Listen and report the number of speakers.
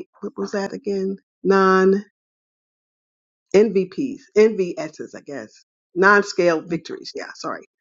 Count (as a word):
one